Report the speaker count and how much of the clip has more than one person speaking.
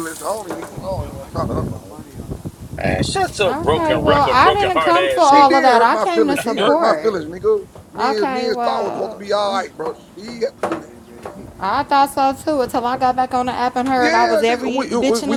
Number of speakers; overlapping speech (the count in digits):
3, about 42%